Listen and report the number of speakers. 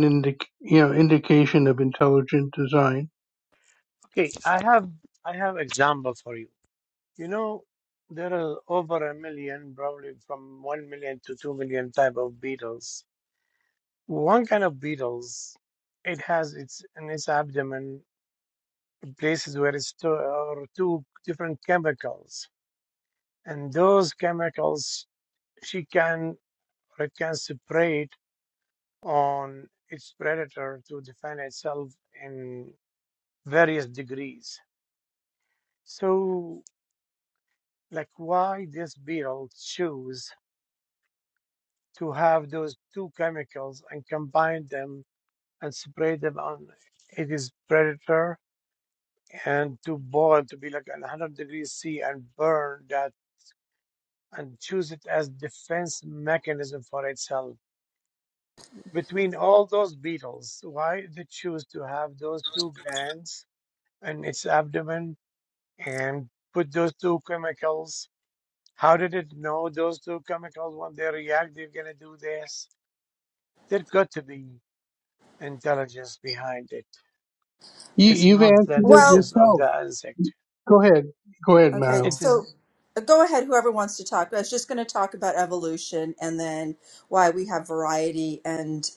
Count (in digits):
3